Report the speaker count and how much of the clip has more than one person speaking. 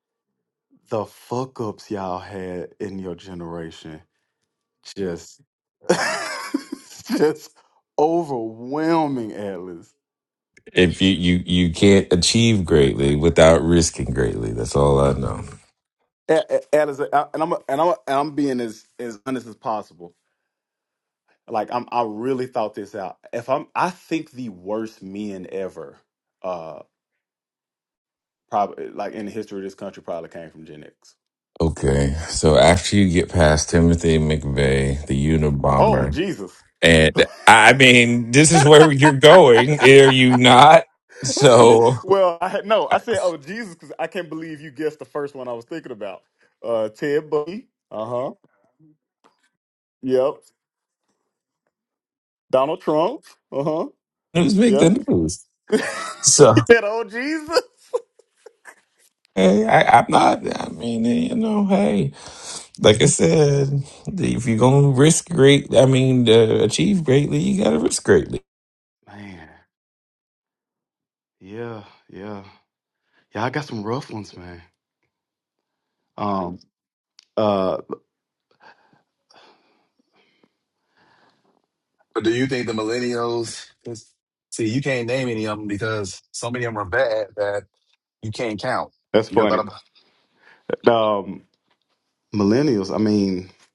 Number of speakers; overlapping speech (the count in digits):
3, about 1%